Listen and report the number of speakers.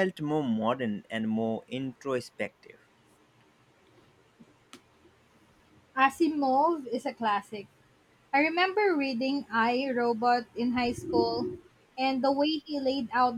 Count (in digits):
2